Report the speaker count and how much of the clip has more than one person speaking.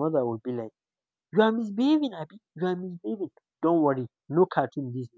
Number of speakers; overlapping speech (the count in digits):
1, no overlap